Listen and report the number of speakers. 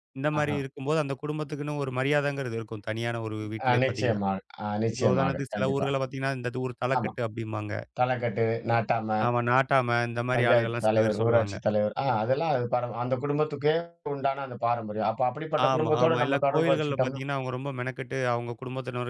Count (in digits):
2